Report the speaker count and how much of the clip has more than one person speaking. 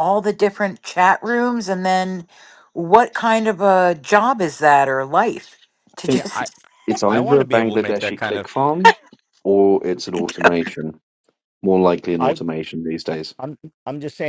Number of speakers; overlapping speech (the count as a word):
three, about 13%